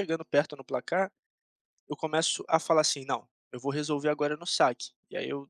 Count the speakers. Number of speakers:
1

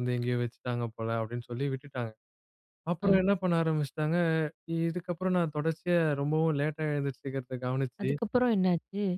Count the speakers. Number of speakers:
2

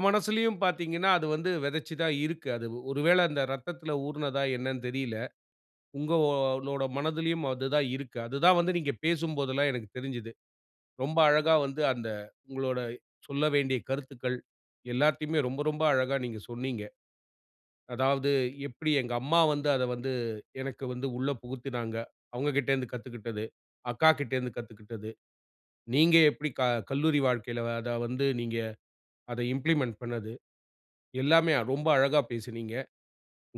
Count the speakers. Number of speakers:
1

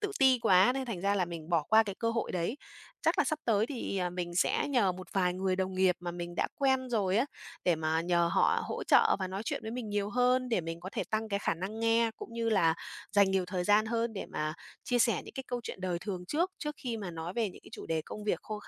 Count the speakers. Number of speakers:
1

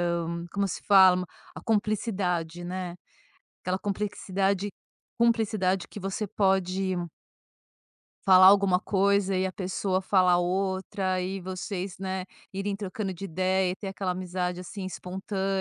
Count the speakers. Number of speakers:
1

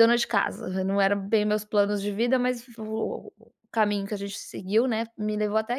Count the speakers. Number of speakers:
1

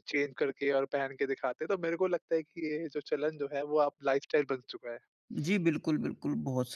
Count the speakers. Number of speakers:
2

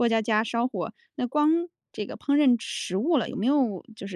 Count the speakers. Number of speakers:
1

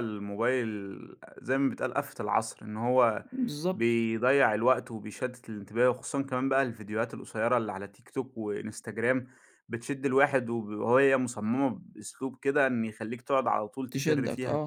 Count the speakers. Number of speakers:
2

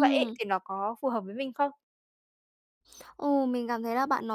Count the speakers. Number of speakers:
2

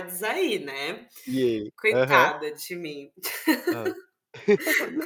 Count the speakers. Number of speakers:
2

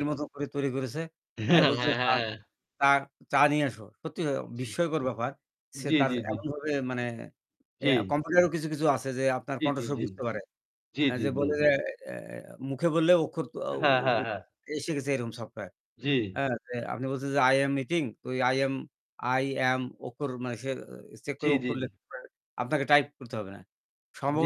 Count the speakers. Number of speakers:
2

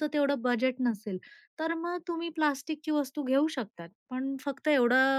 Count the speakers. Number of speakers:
1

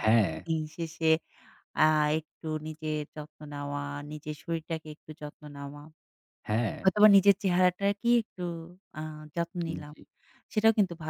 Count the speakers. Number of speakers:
2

